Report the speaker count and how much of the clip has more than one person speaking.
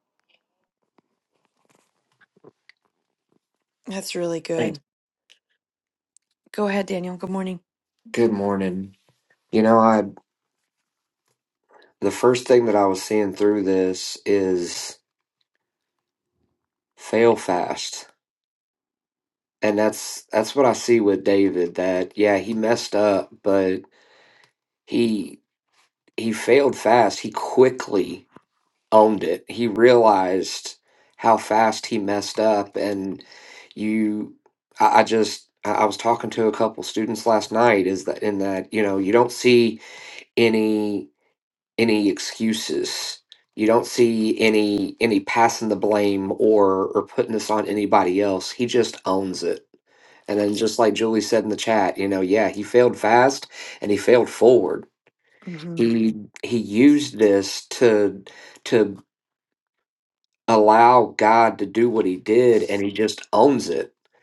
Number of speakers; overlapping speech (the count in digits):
2, under 1%